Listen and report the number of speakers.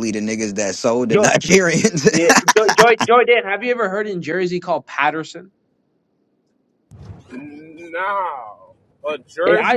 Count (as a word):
three